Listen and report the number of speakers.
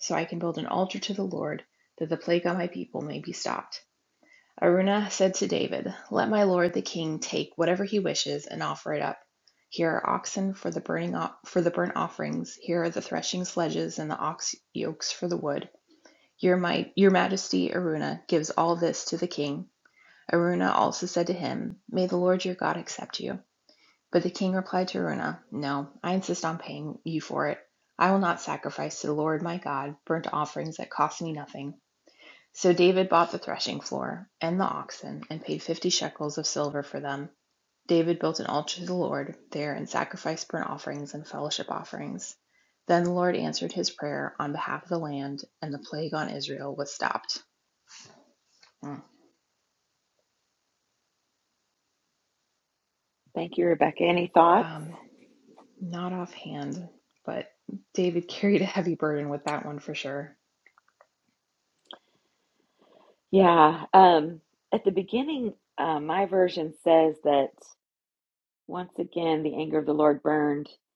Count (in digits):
2